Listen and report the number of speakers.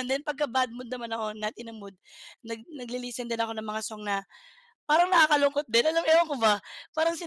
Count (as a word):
one